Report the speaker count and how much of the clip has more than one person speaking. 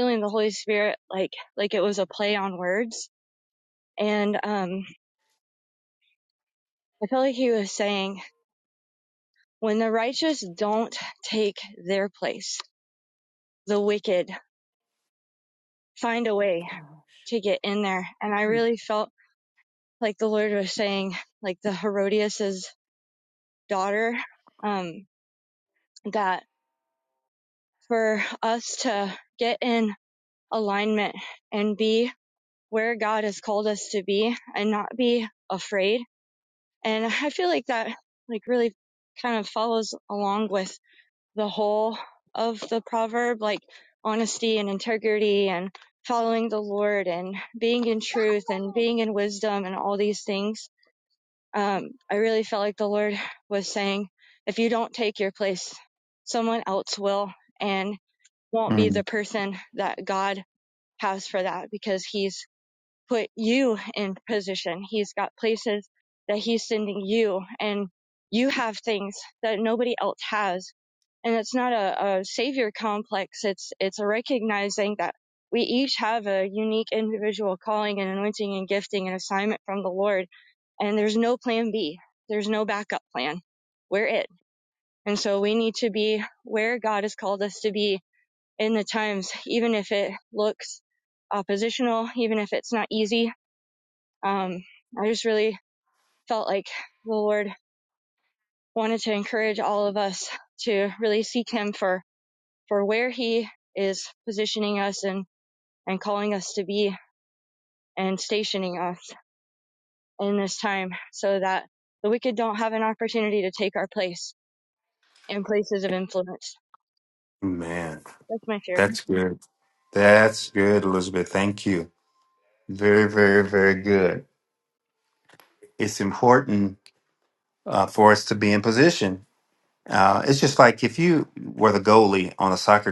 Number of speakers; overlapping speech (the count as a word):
two, under 1%